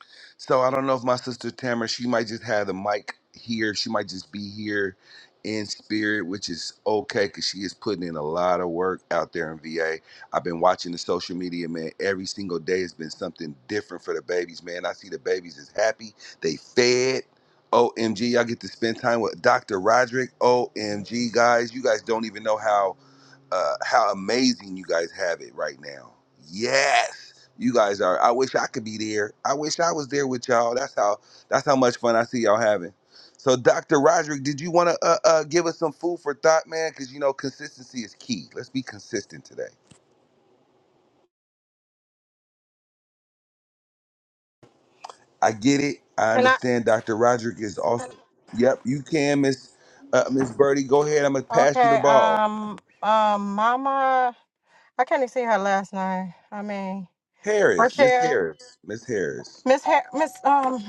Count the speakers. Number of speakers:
2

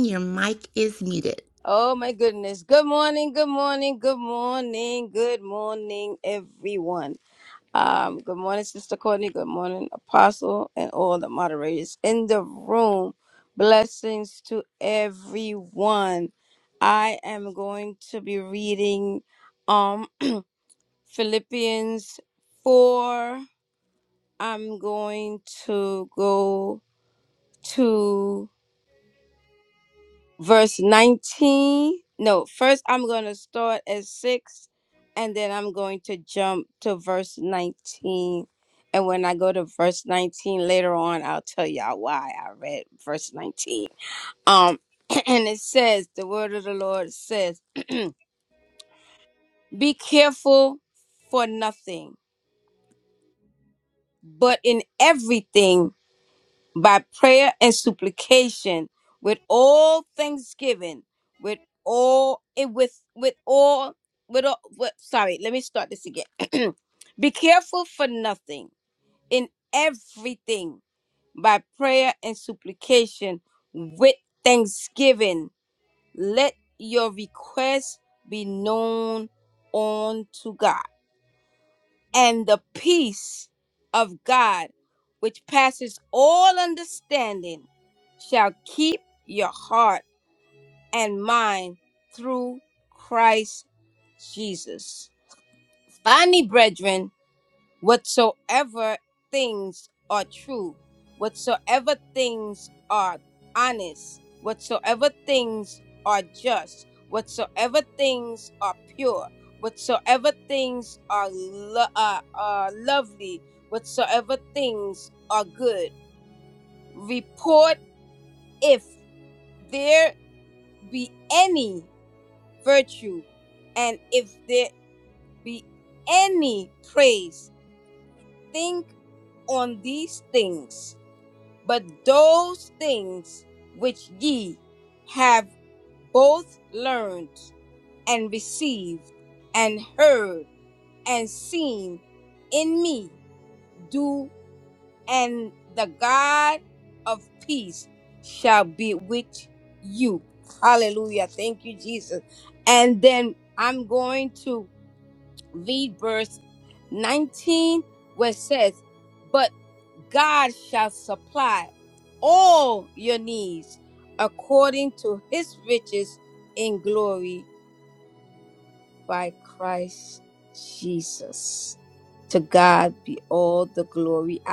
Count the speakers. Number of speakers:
2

